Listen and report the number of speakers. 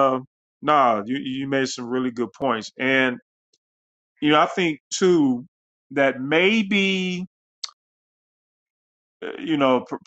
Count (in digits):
1